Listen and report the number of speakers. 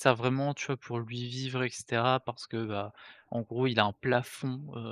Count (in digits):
1